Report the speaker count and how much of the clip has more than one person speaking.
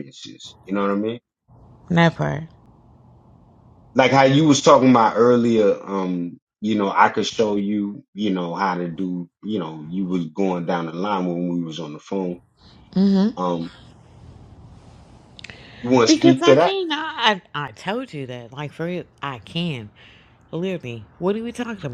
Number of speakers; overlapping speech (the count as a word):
two, about 3%